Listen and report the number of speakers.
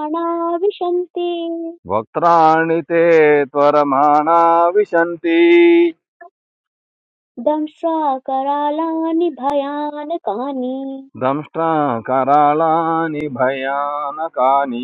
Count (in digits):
2